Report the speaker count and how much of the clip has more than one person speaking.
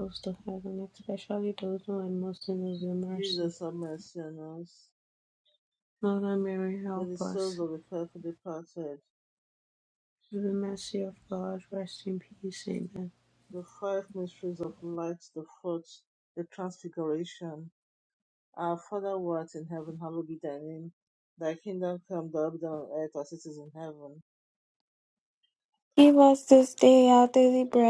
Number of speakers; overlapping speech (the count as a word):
three, about 4%